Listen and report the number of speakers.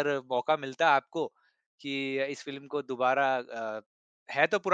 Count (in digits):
1